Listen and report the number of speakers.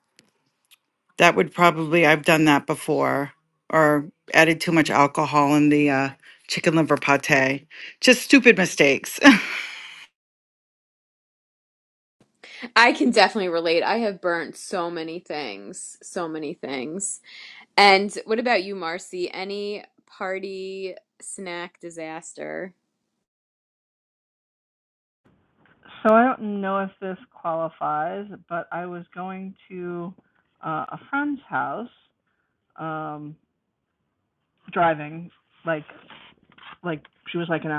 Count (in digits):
3